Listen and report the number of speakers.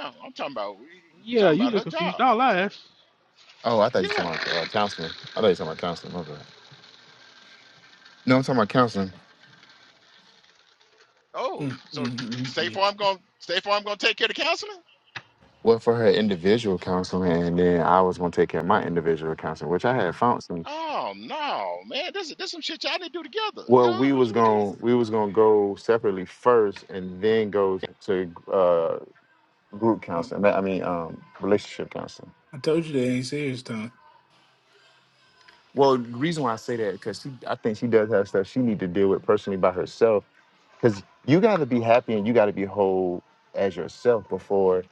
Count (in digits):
4